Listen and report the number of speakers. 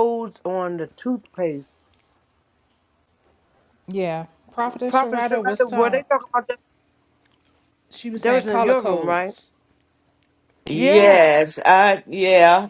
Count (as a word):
three